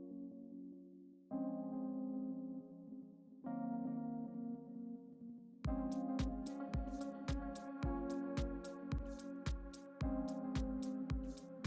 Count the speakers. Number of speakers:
0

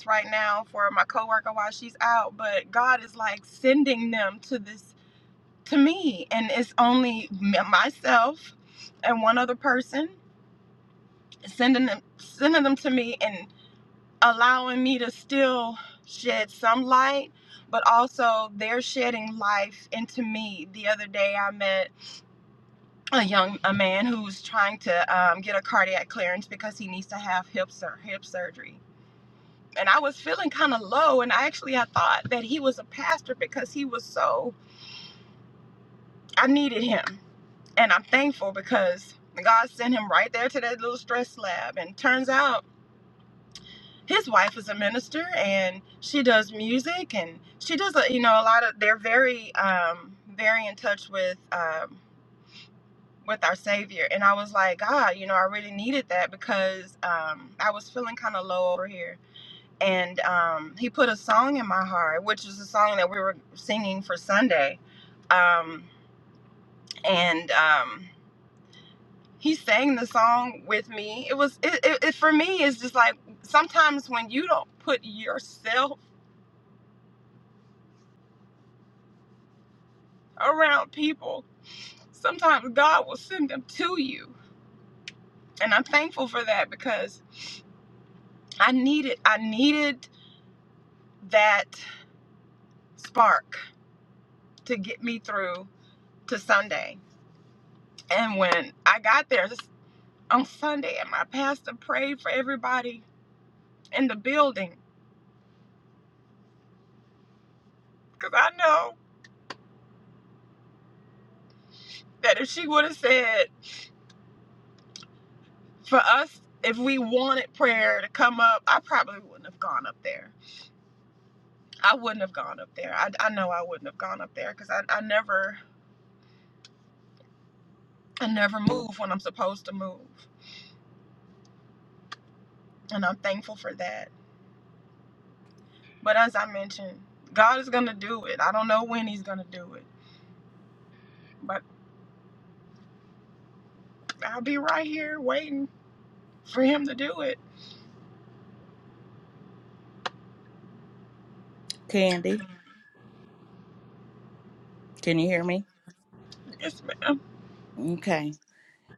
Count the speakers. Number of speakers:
2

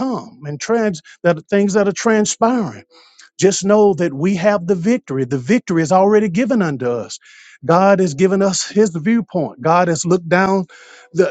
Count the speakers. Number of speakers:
1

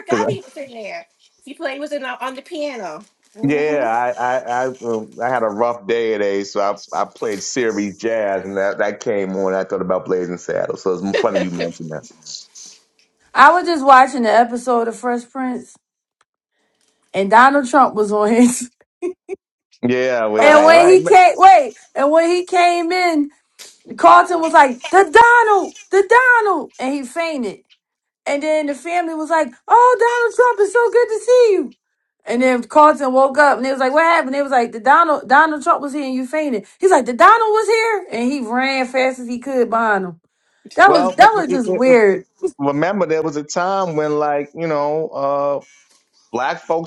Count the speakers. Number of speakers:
3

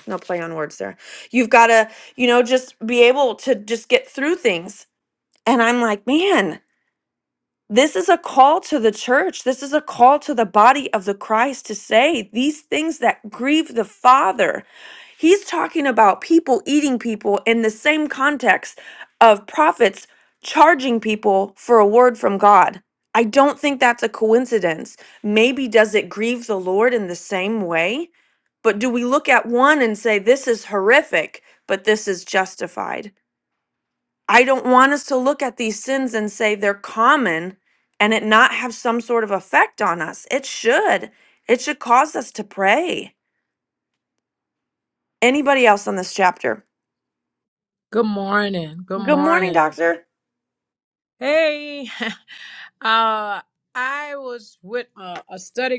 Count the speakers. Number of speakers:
2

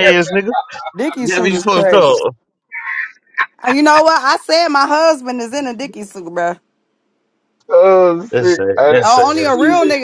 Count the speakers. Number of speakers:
3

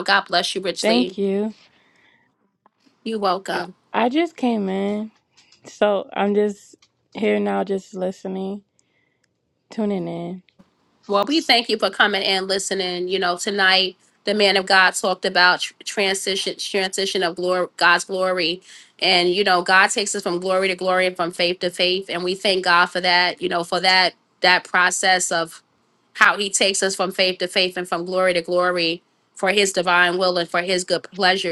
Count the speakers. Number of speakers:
2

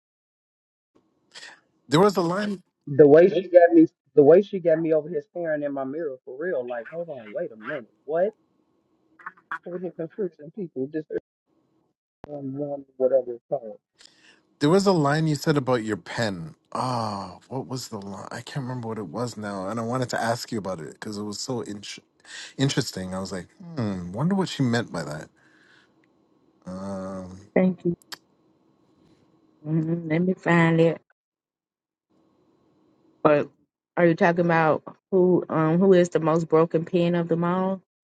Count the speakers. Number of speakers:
3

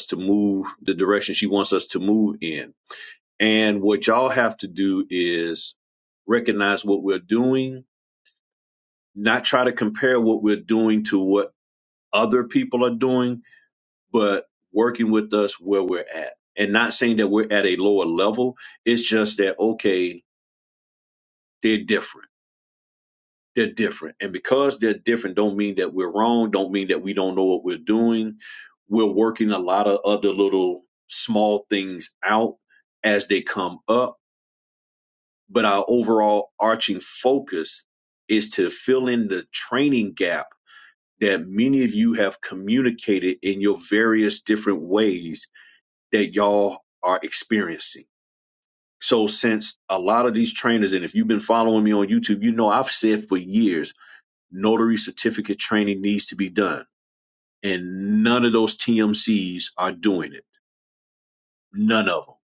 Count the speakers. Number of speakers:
1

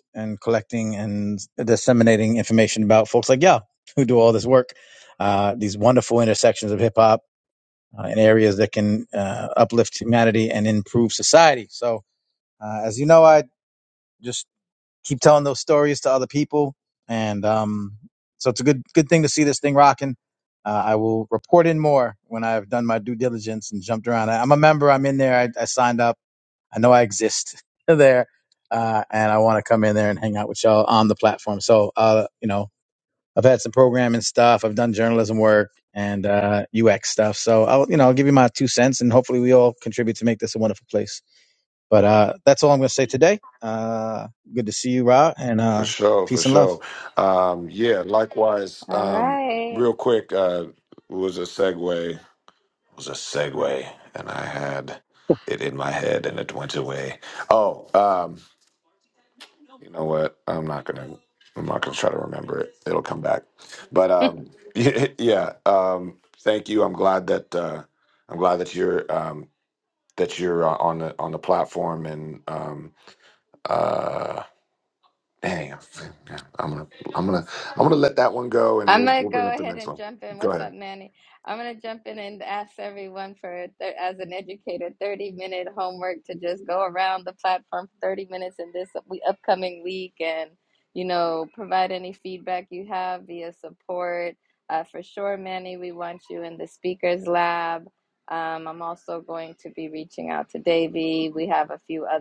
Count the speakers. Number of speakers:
3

